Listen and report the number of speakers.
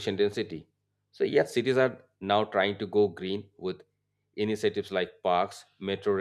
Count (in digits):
1